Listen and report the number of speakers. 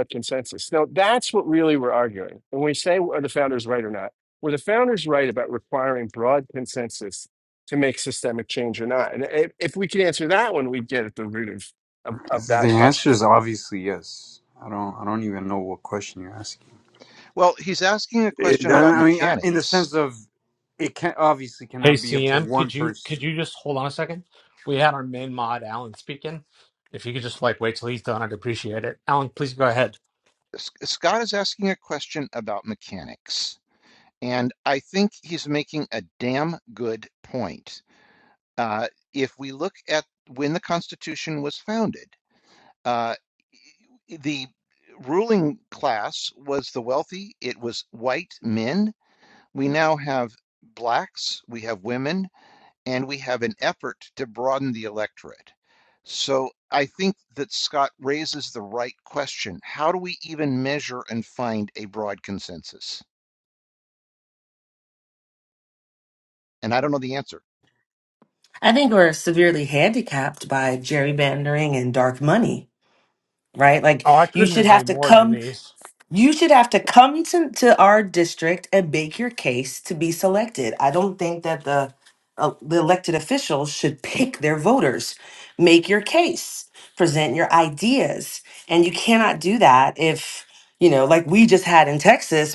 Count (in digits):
5